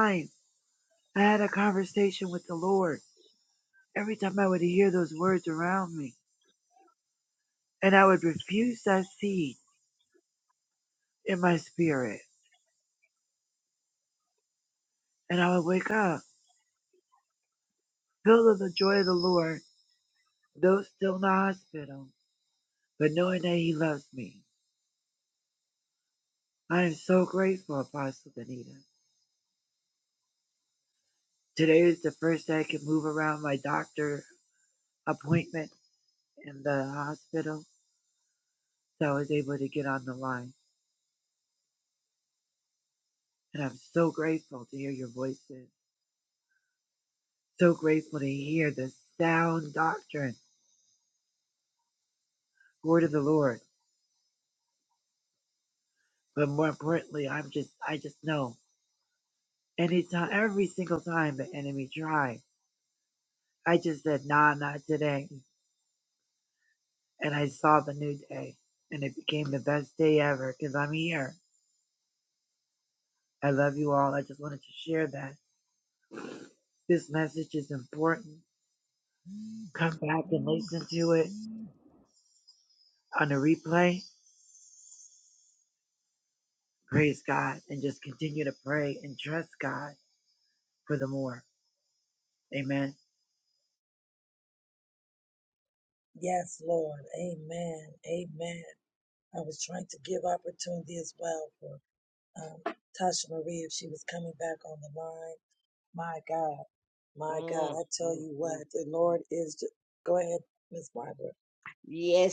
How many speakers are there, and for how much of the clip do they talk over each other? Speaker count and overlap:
three, about 1%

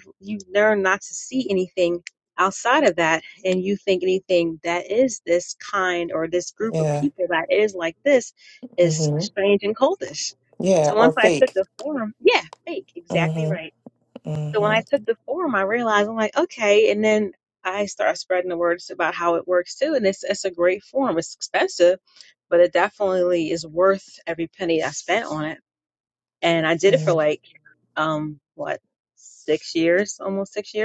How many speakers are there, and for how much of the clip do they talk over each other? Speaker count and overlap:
two, about 8%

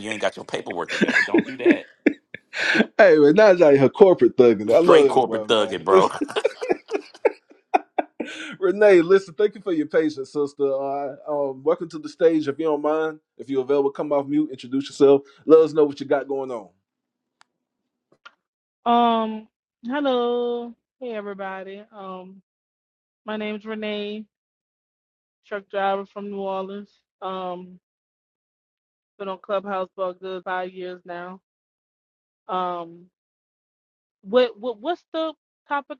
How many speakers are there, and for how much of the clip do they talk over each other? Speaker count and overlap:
three, about 3%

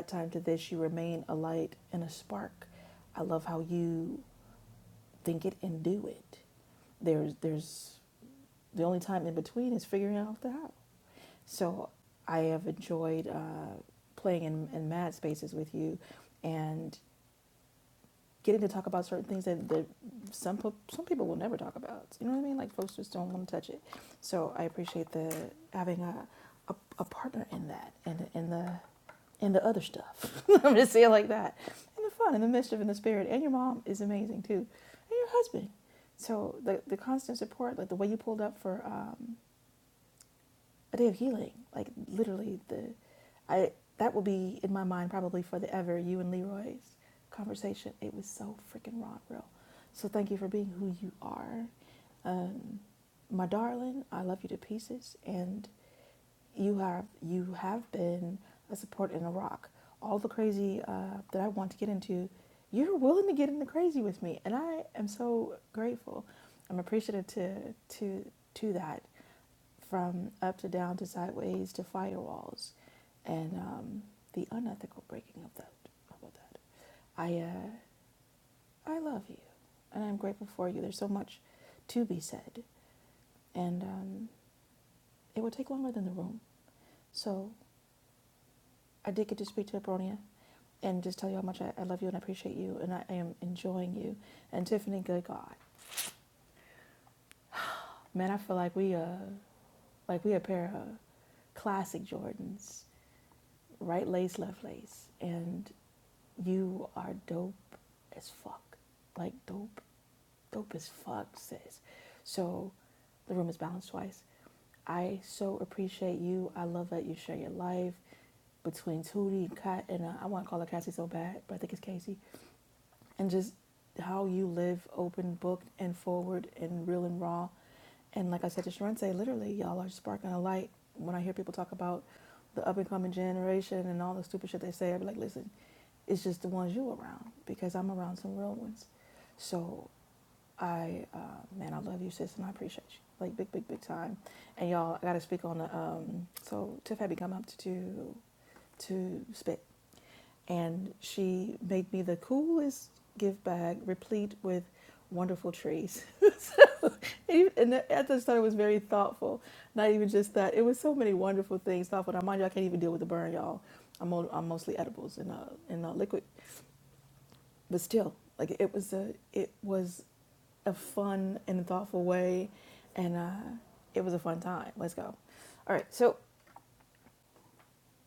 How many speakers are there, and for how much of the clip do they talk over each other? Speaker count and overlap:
one, no overlap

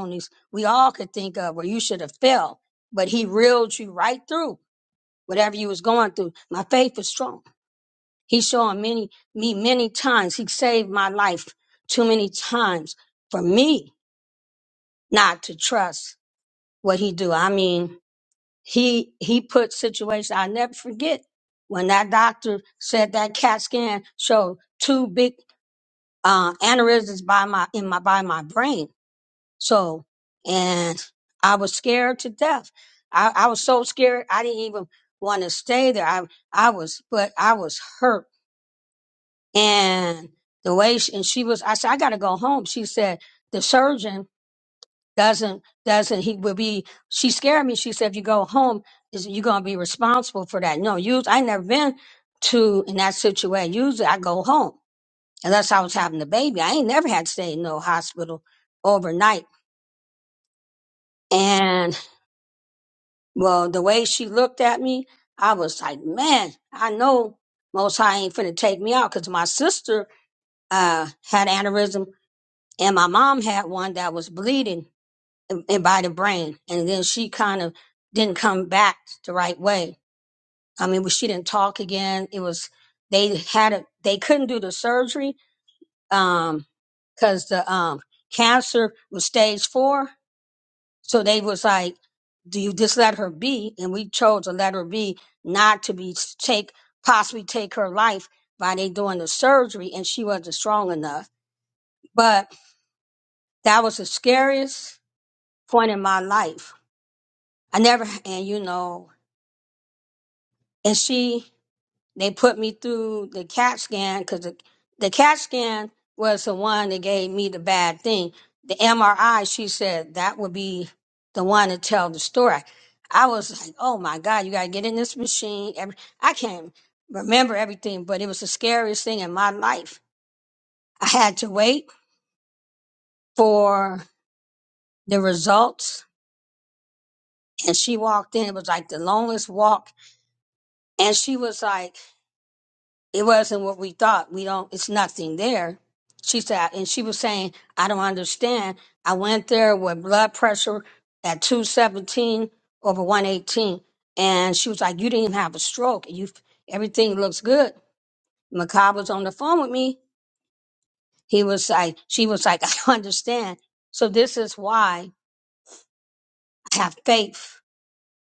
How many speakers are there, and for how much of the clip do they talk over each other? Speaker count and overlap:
one, no overlap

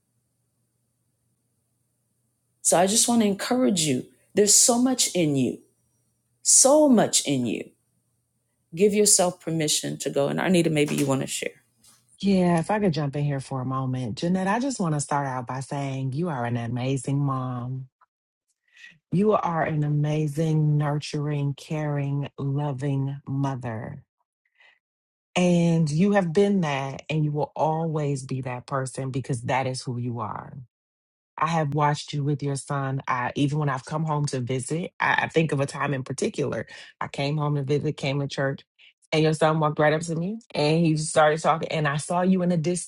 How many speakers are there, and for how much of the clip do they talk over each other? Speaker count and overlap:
two, no overlap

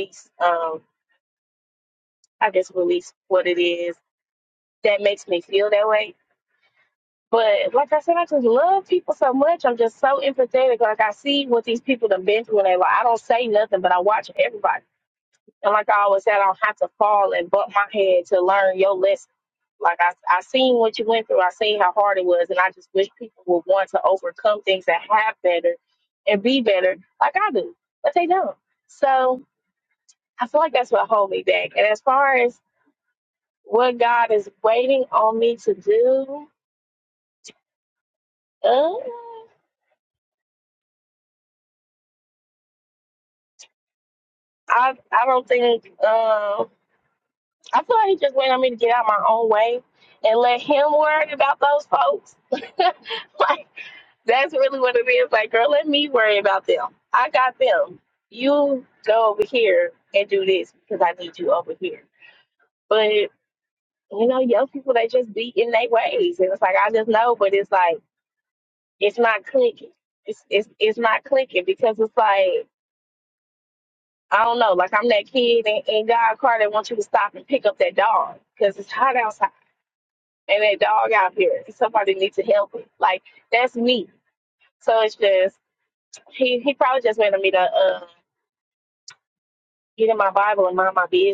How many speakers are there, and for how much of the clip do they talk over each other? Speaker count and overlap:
one, no overlap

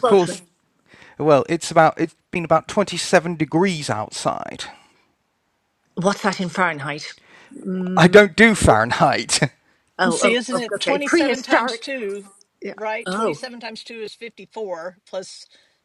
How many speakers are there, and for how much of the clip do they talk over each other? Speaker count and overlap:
three, about 19%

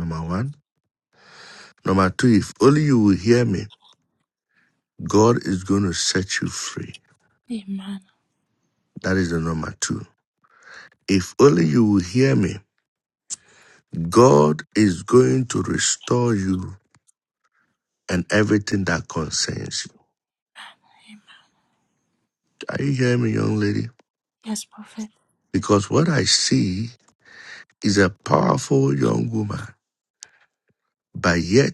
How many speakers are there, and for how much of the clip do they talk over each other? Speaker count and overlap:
two, no overlap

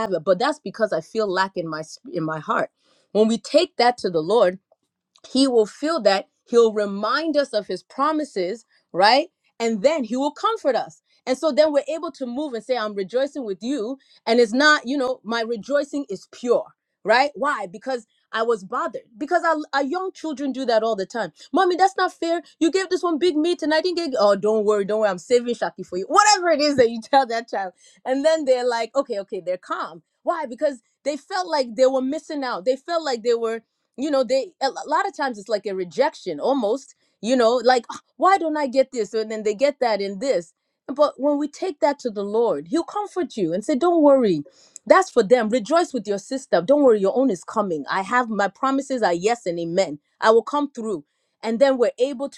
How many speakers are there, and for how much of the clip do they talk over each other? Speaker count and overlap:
one, no overlap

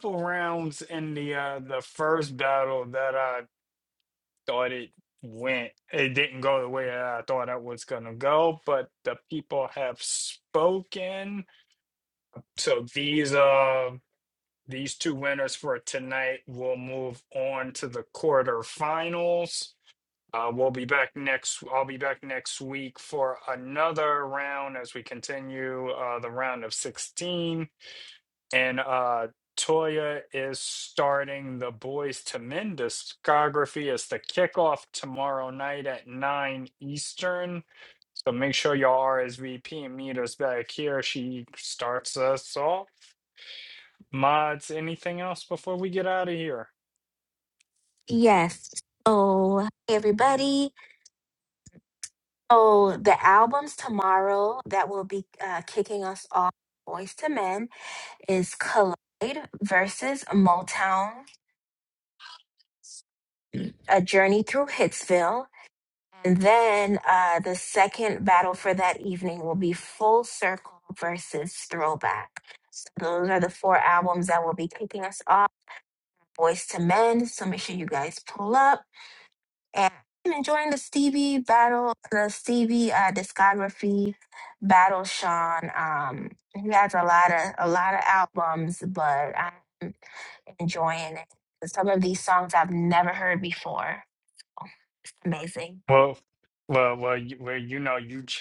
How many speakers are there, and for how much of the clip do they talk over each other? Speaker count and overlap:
two, no overlap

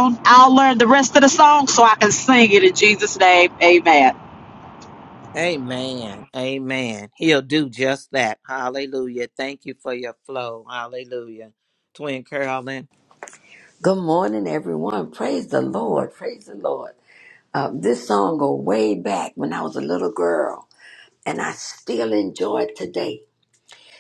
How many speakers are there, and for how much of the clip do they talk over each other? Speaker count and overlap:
three, no overlap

